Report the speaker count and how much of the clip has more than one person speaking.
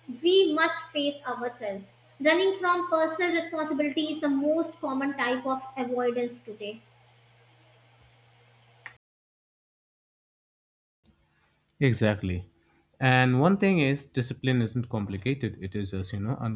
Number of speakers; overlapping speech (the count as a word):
two, no overlap